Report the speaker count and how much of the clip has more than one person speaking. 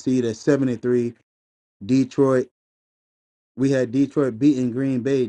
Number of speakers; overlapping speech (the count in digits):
1, no overlap